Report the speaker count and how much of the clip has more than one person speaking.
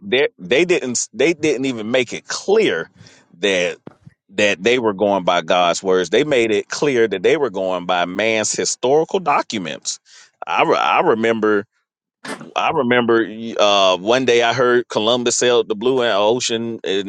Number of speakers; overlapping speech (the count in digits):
1, no overlap